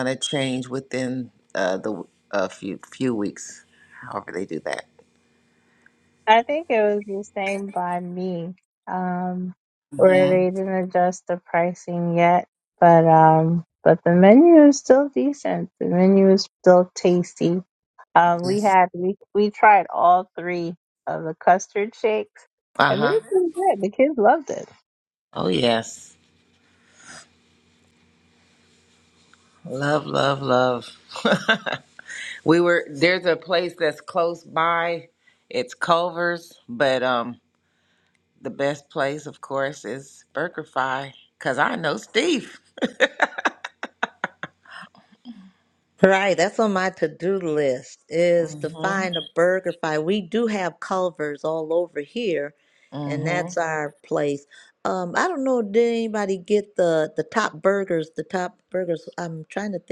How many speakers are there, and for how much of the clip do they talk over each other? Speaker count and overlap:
3, about 3%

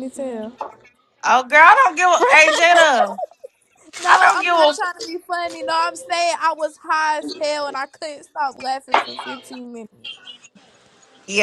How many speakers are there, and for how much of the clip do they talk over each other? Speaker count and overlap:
2, about 6%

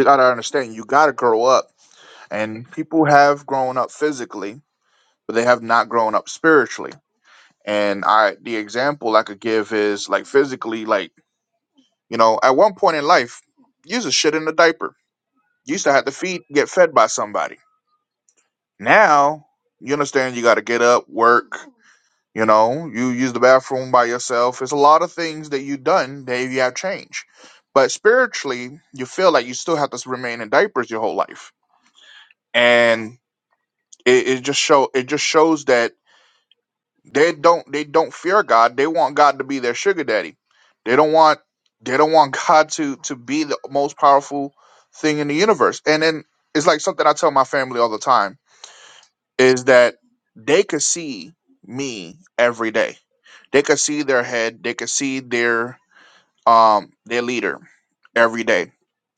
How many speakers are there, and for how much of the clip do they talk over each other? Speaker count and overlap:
1, no overlap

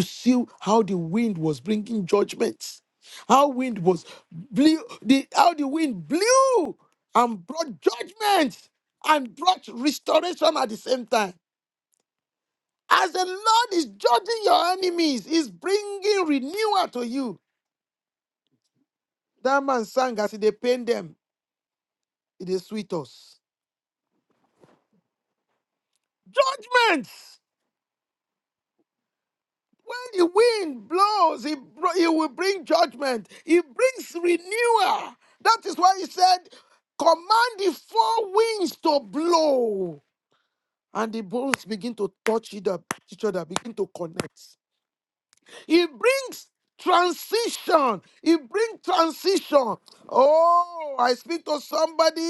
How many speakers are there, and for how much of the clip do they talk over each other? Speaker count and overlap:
1, no overlap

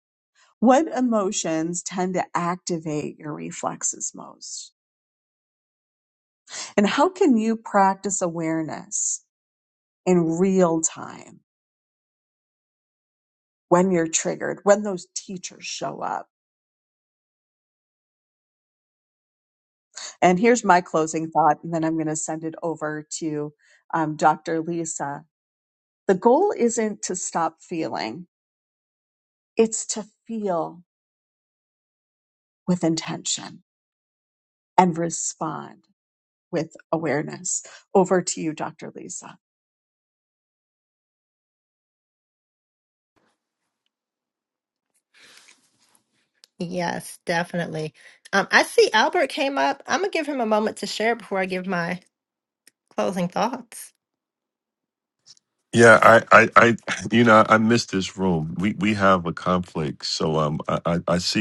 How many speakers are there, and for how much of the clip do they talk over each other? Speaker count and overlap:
3, no overlap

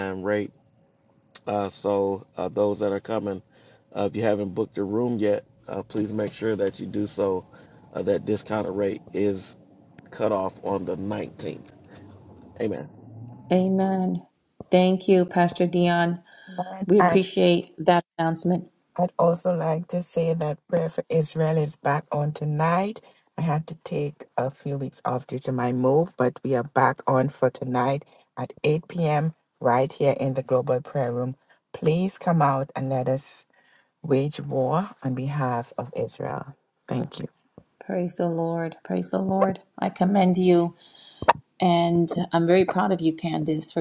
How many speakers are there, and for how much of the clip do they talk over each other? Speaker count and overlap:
3, no overlap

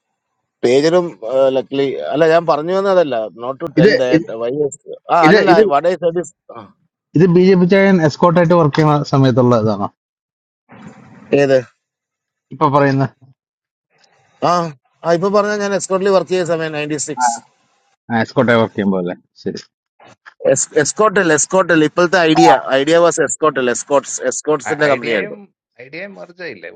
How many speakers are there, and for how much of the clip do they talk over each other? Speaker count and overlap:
3, about 6%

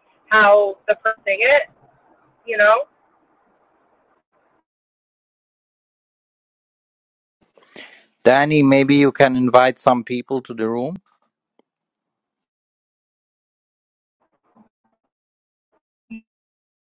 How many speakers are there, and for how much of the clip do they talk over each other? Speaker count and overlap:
2, no overlap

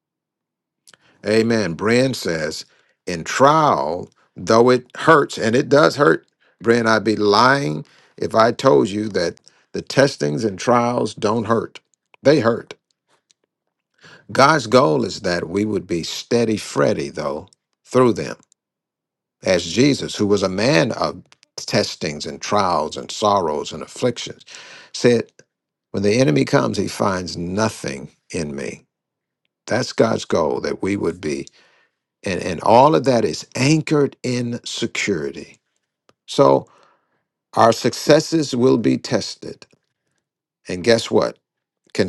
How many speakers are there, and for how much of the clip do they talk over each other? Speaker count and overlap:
1, no overlap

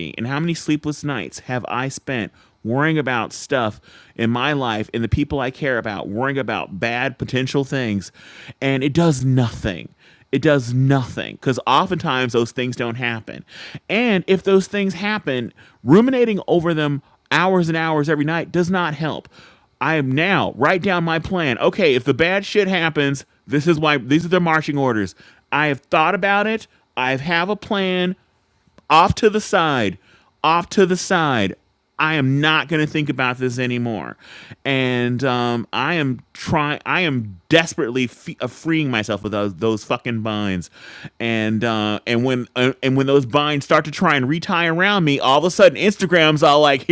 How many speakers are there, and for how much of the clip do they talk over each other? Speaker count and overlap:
1, no overlap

